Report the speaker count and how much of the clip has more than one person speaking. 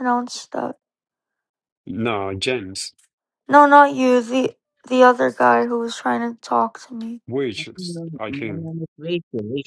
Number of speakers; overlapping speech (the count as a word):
three, about 11%